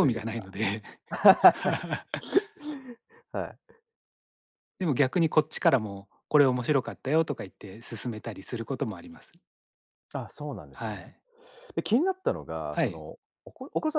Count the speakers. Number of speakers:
2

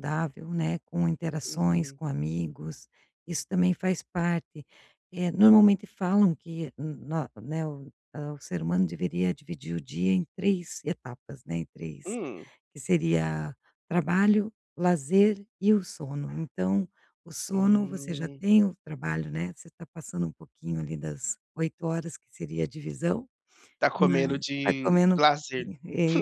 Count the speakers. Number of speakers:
2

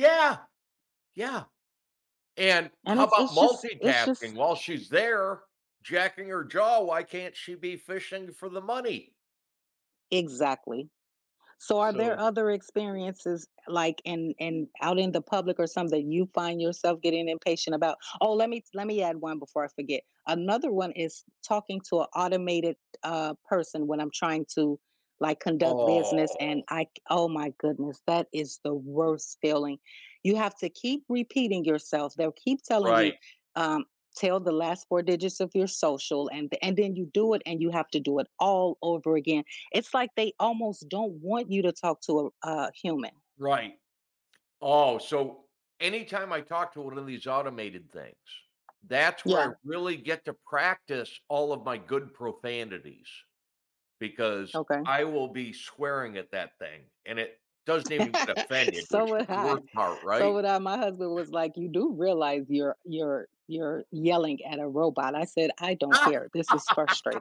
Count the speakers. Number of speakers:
2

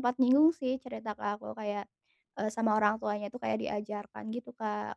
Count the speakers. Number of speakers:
1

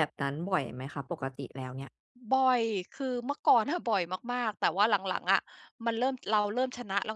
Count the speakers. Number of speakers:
2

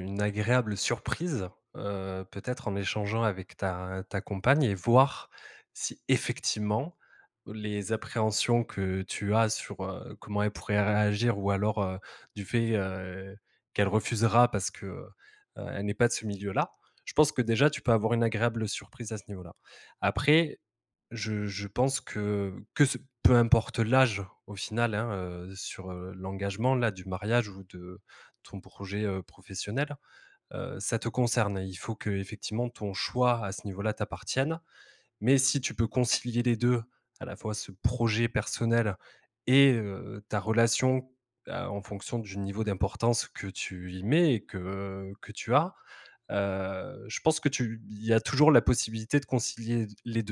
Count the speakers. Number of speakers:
1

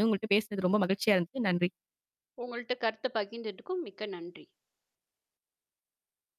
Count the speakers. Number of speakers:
2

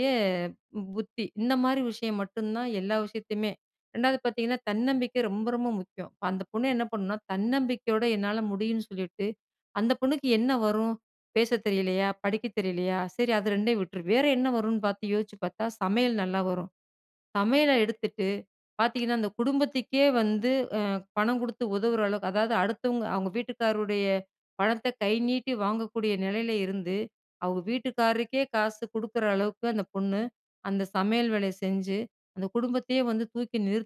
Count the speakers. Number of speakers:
1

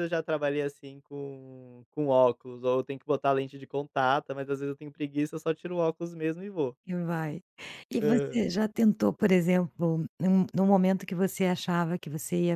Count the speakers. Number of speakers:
2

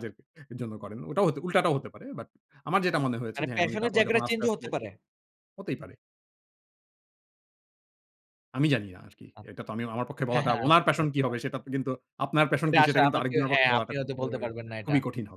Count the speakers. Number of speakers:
2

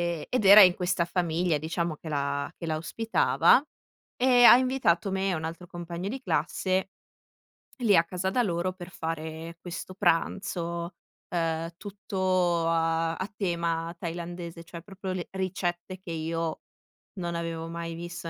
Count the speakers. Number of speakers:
1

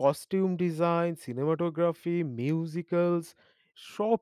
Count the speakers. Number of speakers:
1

